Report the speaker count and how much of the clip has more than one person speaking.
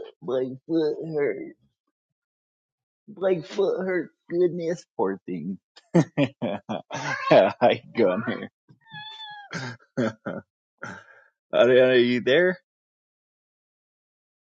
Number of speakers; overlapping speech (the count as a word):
one, no overlap